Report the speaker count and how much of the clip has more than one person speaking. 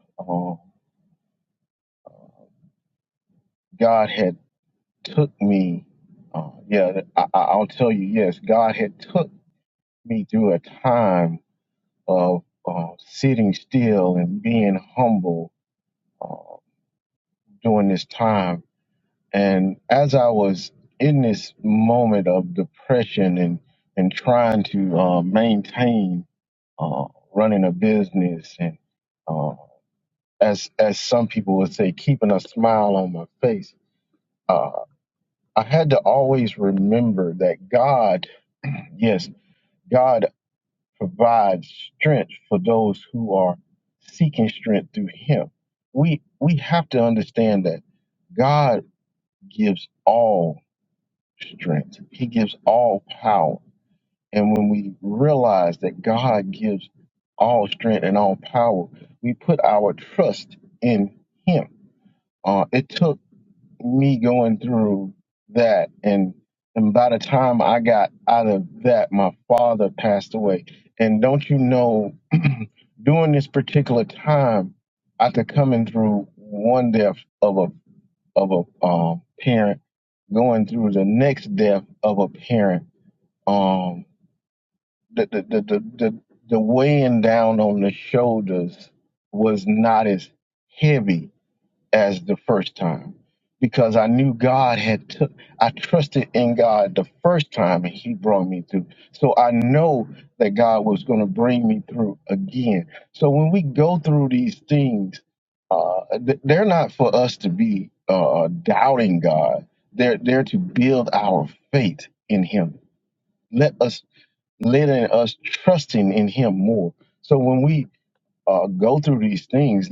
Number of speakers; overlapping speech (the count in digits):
1, no overlap